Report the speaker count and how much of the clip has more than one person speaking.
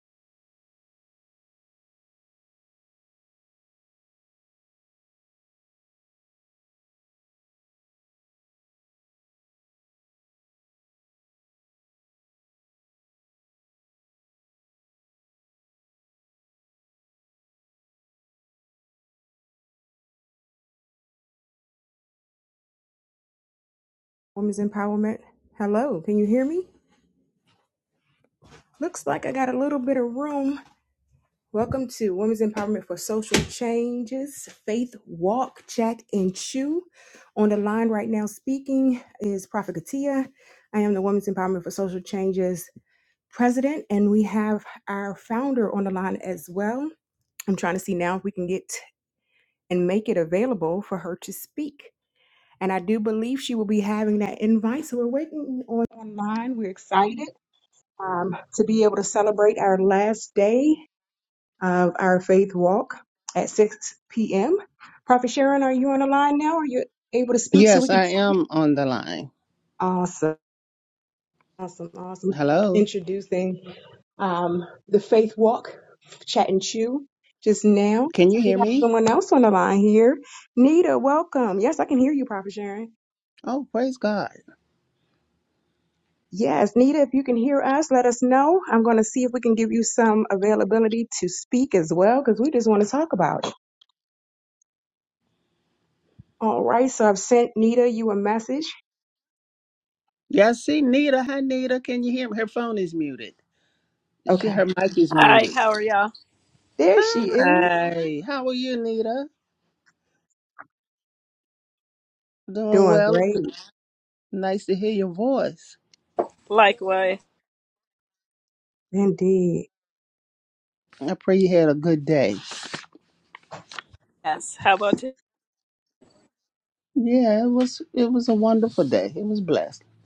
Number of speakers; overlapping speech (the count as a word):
three, about 3%